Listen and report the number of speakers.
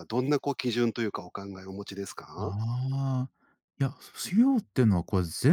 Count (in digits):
2